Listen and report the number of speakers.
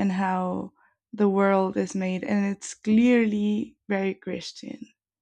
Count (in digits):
1